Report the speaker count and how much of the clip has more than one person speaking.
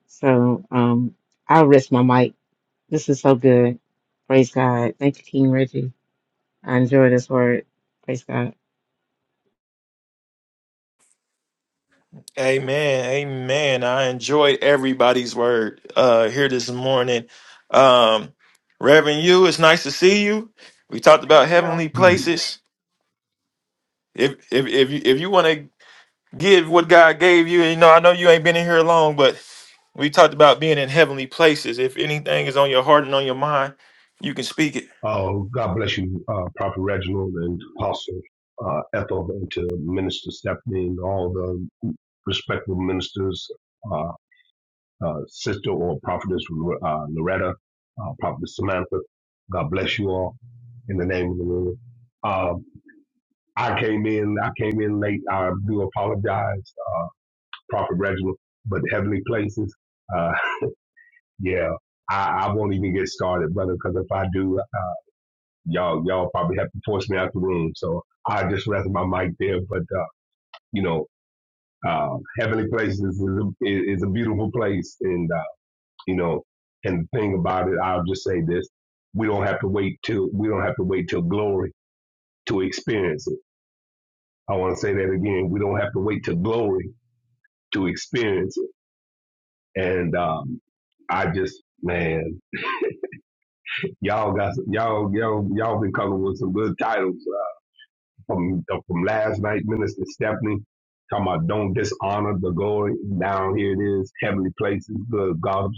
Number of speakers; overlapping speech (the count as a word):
three, under 1%